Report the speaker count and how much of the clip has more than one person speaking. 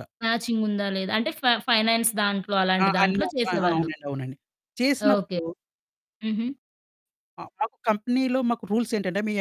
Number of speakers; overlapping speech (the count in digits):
2, about 15%